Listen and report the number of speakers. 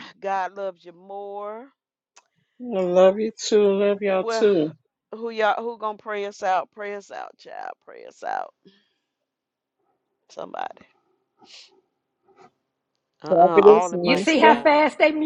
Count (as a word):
three